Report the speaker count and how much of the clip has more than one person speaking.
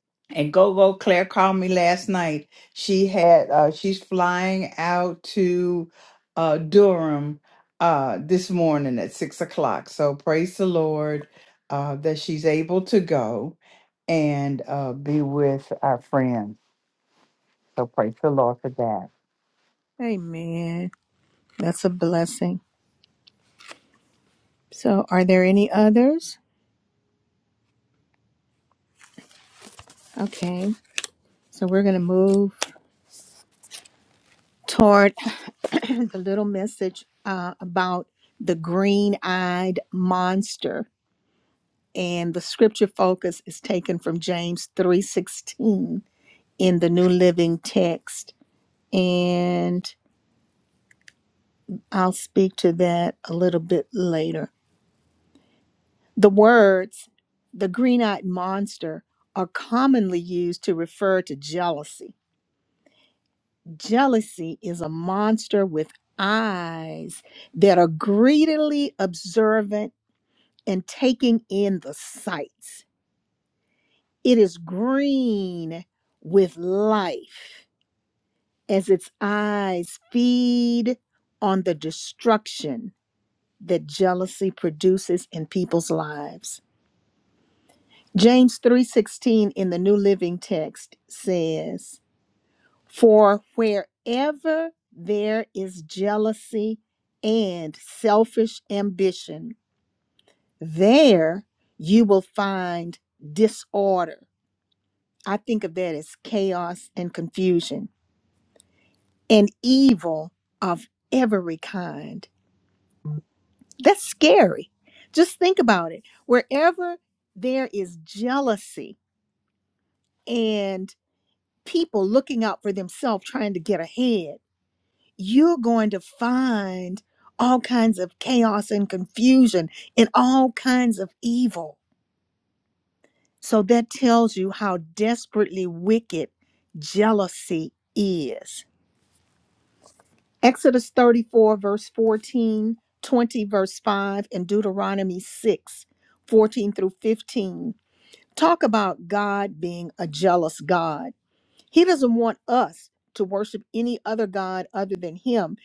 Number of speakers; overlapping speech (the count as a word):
two, no overlap